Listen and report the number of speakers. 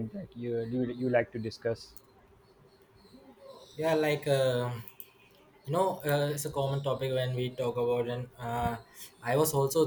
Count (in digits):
2